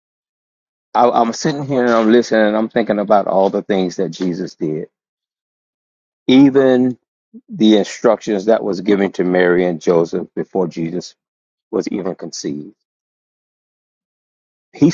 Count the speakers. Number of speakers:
1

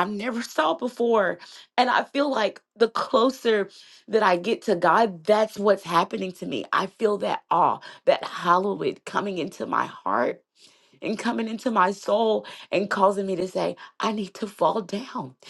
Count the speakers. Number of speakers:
1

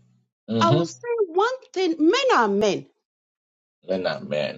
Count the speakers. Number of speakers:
2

